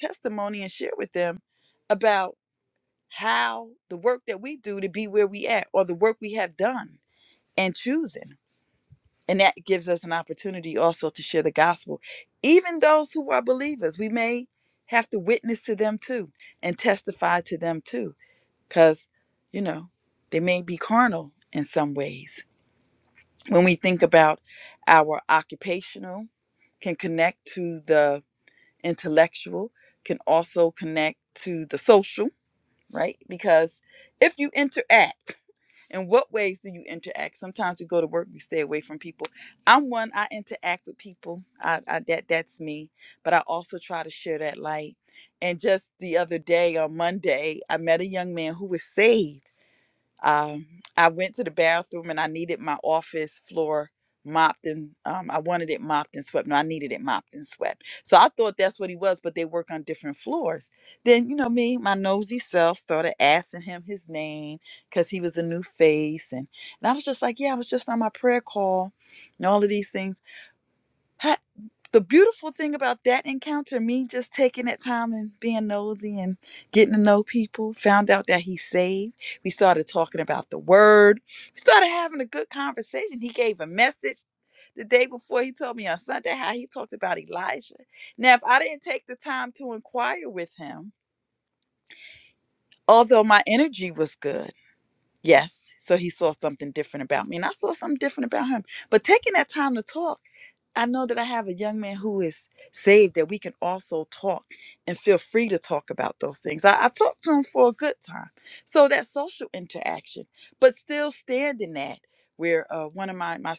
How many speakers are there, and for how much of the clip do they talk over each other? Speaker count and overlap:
1, no overlap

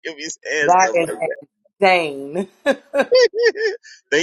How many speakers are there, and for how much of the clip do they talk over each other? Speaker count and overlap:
2, about 13%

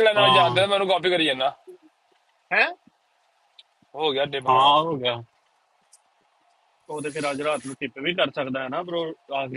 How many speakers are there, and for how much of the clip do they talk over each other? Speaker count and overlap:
3, about 8%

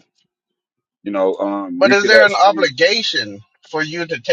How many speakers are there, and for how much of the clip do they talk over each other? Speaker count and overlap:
2, about 20%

